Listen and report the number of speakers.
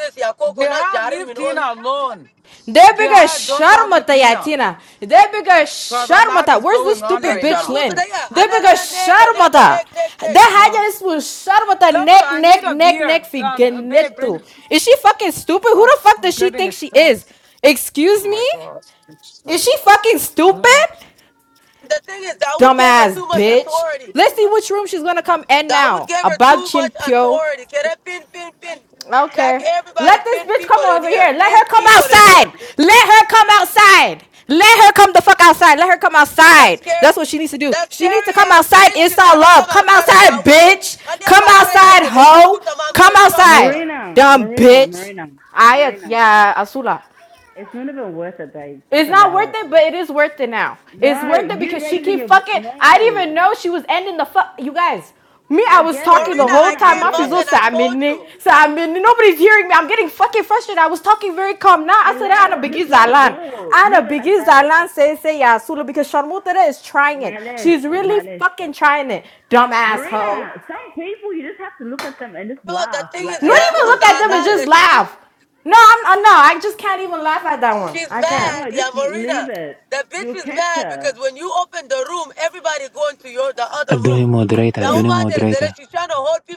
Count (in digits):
5